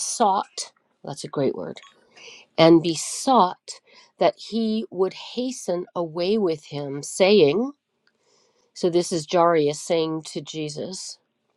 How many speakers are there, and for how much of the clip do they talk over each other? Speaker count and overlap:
one, no overlap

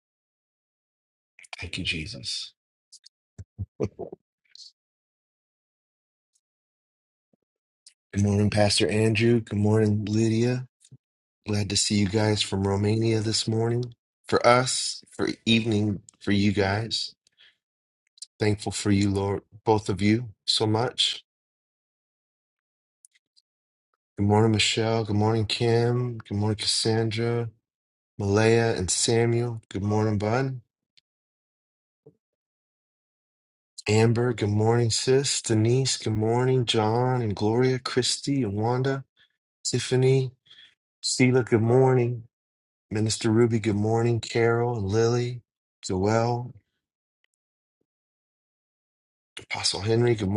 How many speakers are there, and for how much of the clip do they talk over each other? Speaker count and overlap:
one, no overlap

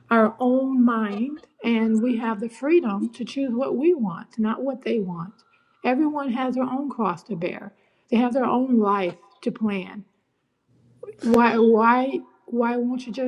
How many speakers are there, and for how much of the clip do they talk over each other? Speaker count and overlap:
one, no overlap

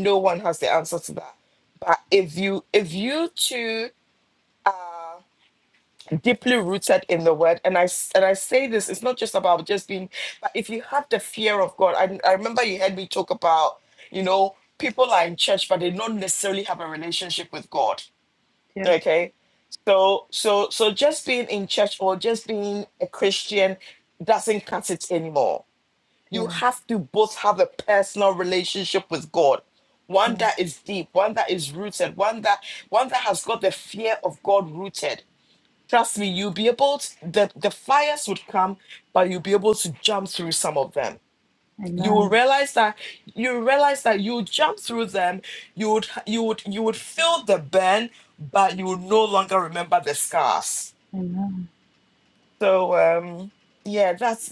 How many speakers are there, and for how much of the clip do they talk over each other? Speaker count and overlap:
two, about 2%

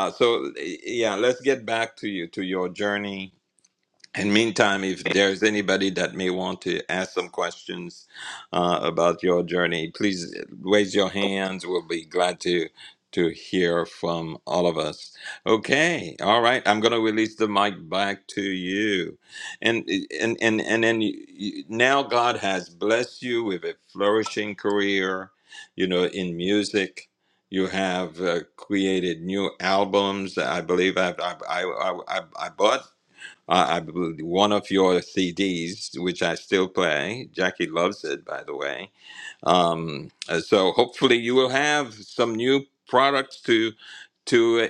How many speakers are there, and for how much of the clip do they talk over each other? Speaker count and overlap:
one, no overlap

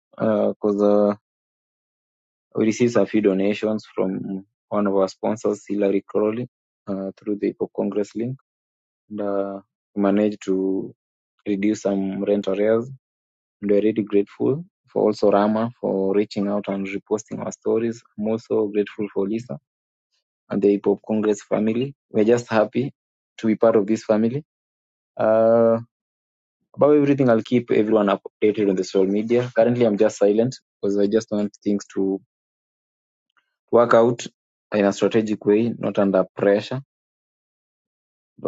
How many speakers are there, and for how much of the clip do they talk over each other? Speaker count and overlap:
one, no overlap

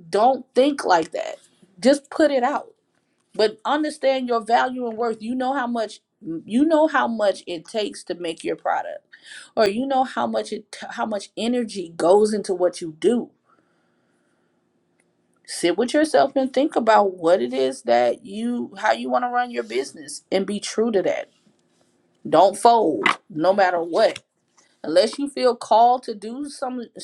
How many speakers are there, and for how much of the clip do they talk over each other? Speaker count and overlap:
one, no overlap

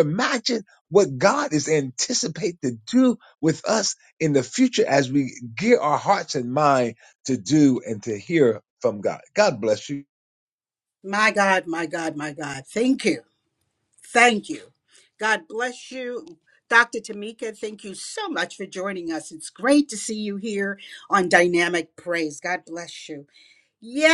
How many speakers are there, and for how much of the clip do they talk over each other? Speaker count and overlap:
two, no overlap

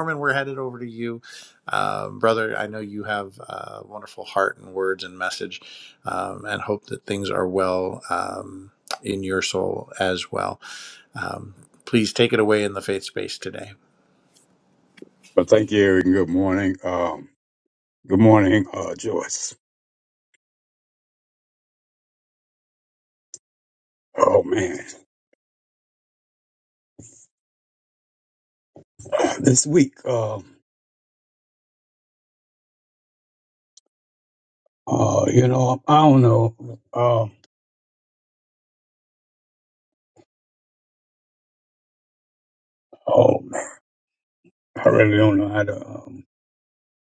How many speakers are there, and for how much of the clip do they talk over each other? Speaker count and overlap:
two, no overlap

